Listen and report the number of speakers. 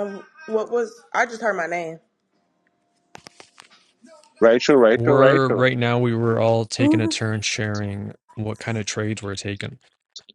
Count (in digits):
3